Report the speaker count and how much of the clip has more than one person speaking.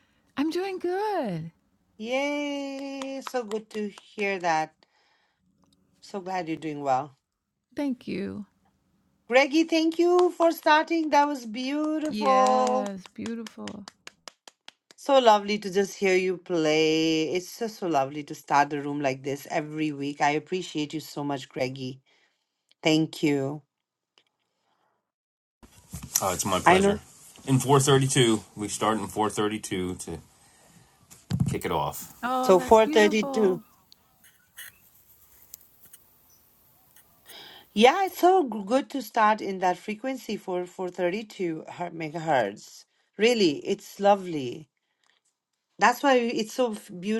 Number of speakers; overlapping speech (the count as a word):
three, about 4%